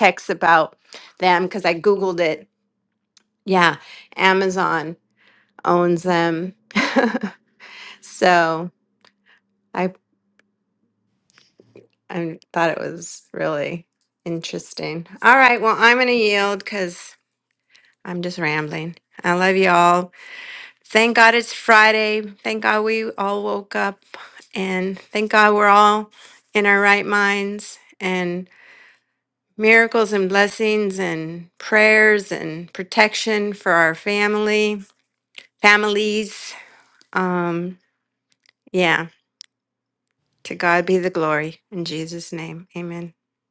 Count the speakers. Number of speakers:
1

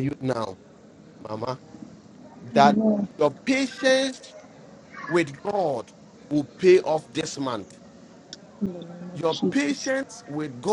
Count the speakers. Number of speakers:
2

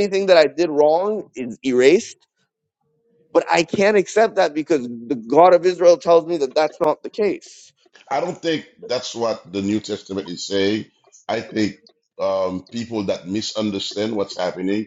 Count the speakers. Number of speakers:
2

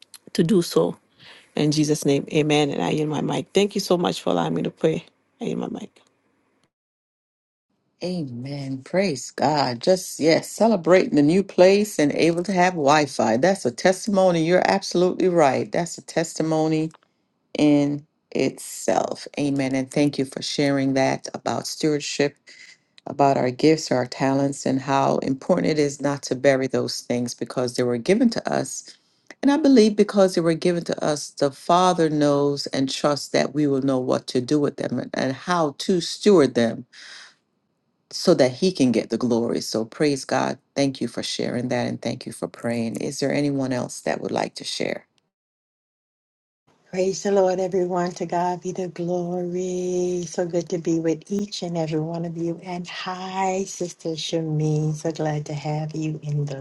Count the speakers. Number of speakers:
3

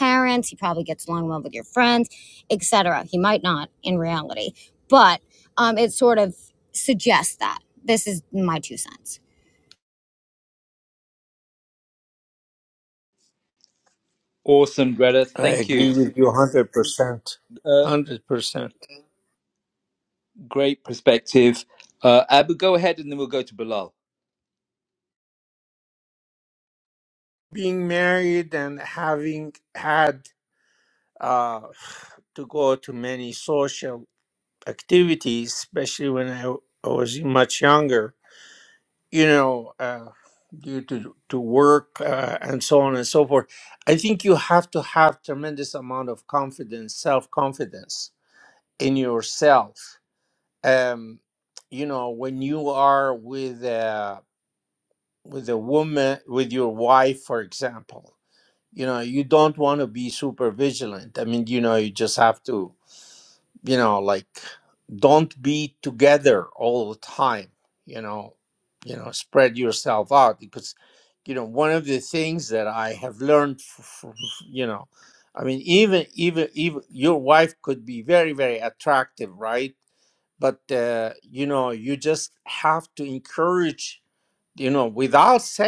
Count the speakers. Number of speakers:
3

